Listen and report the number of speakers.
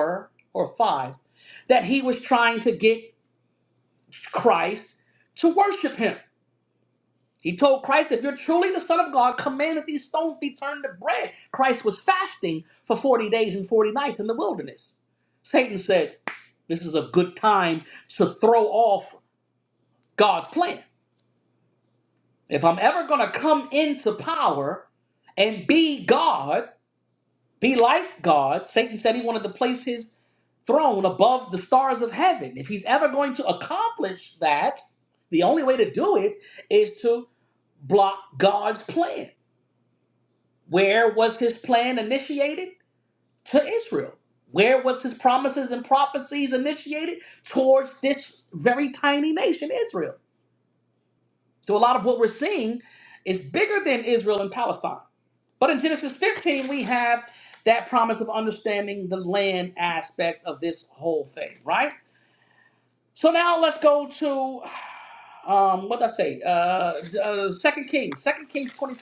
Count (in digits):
1